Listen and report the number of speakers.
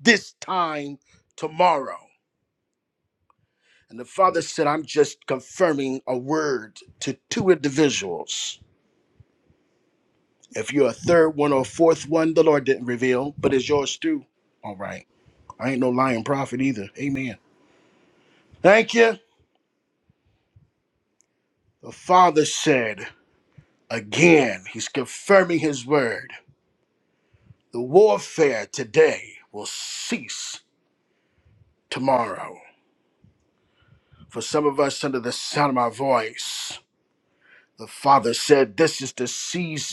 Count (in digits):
1